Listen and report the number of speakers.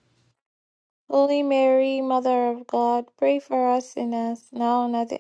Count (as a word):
one